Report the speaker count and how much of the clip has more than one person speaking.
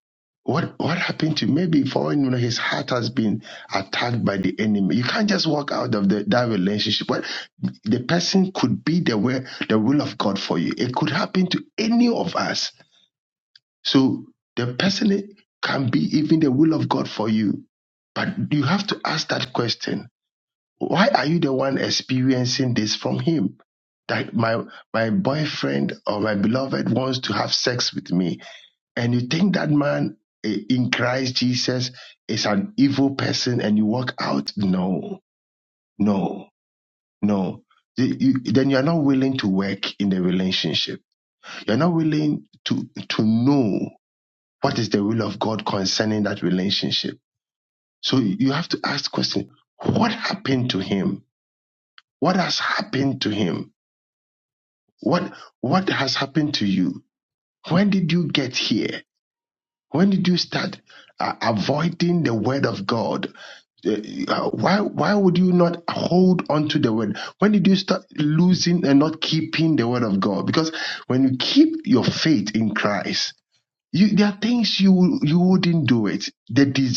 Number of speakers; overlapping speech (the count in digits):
1, no overlap